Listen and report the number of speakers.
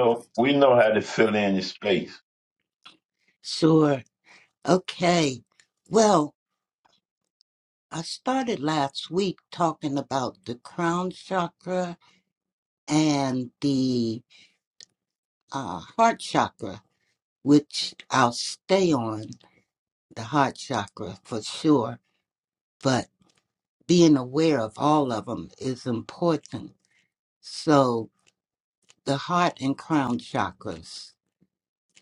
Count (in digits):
2